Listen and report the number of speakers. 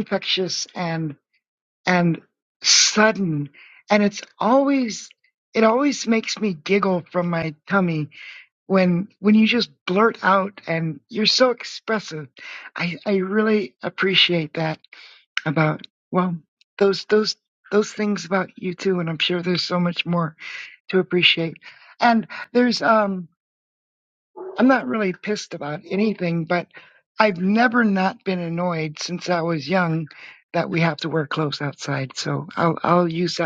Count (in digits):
1